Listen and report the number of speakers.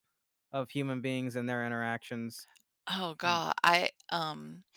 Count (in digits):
2